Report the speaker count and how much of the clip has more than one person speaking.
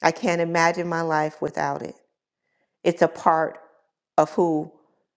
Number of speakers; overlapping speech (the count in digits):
1, no overlap